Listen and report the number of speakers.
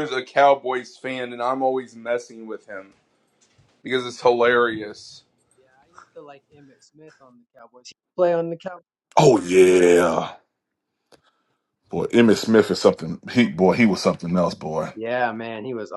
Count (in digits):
3